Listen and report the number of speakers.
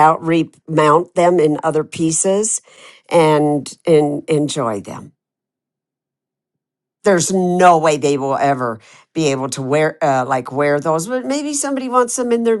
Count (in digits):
1